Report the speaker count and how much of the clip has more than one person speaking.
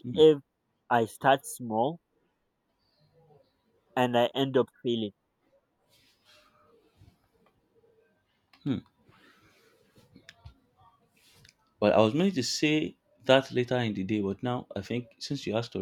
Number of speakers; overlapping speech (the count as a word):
two, no overlap